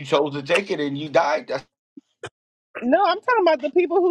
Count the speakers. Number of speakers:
2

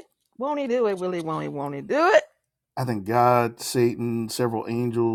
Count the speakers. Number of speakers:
2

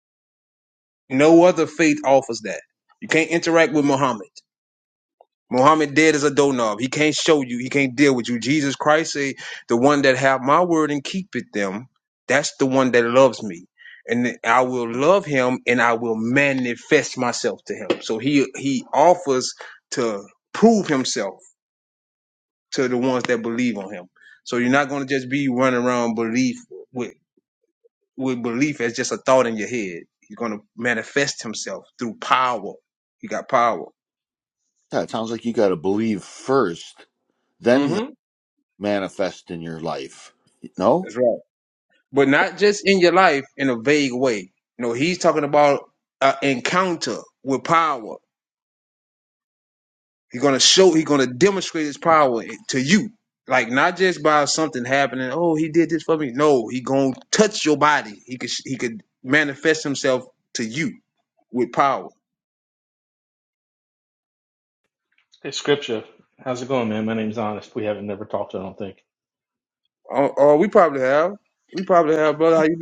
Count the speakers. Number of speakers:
3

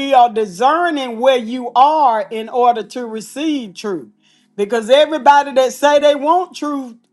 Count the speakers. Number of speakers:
1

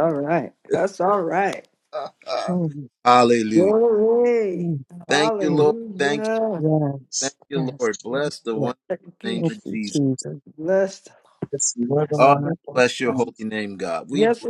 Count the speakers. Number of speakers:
4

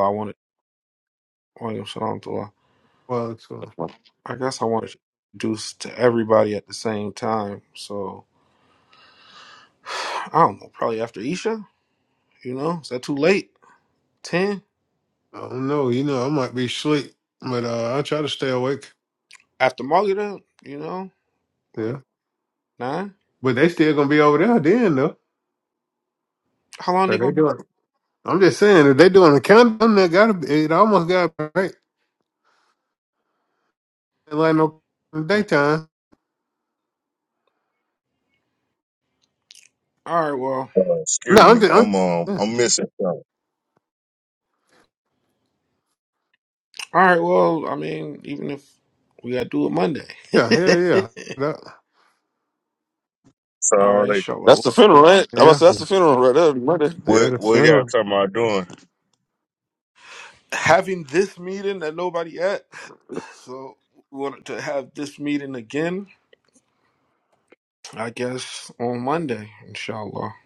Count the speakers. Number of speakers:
4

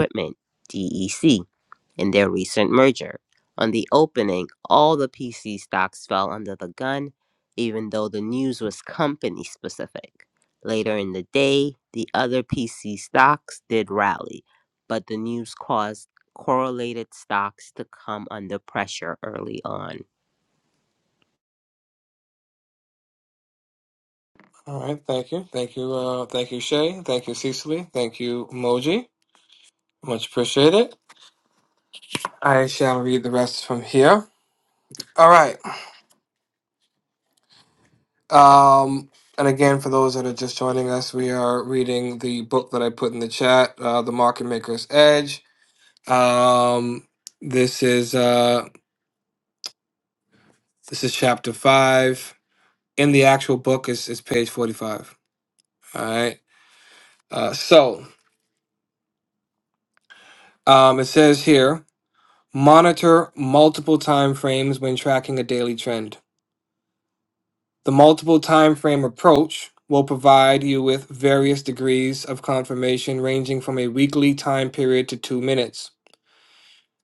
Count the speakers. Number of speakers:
2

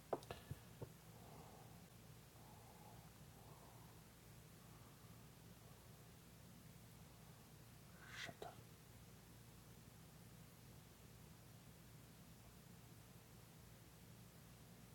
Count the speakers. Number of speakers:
0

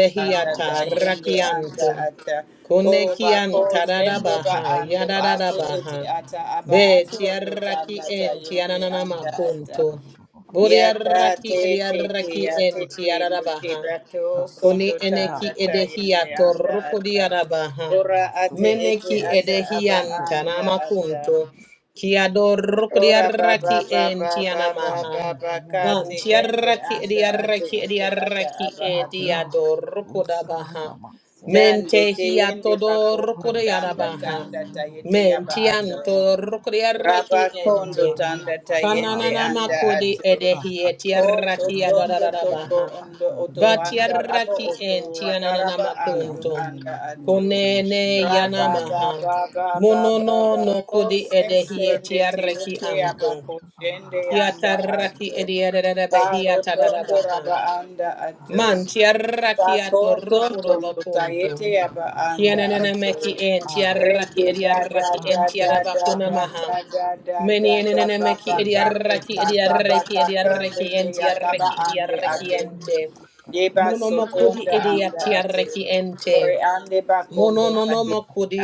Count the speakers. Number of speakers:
3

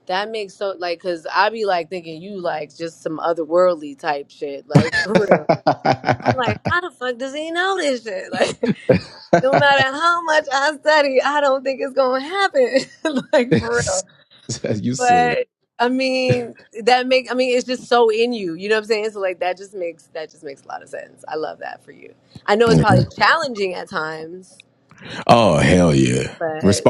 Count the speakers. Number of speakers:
2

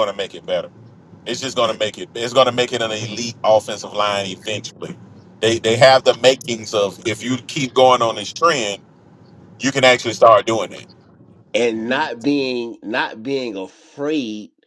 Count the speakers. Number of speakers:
2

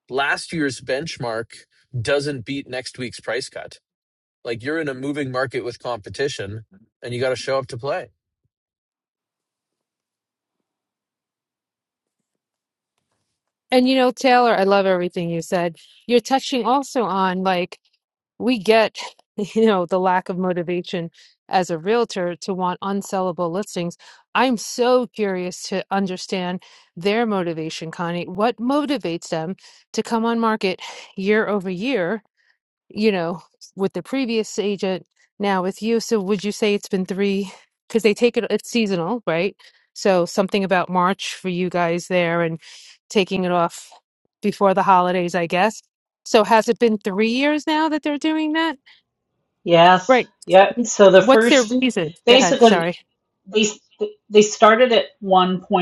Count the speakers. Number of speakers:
3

